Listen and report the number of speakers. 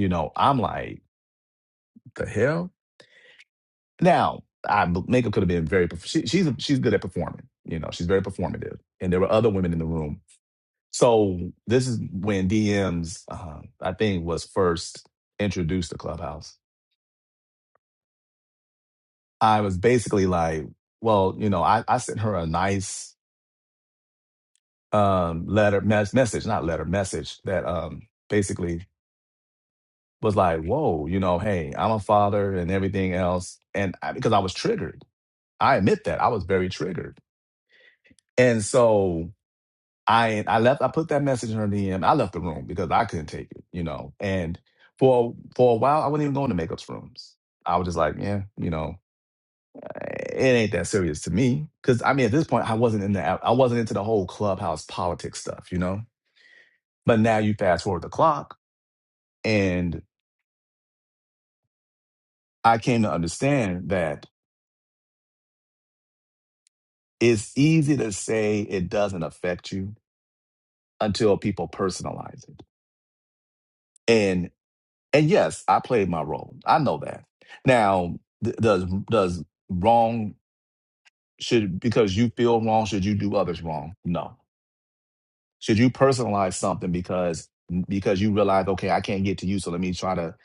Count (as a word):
one